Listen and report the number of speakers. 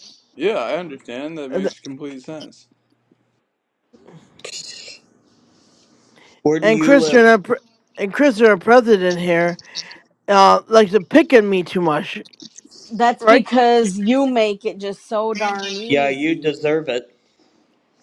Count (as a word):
four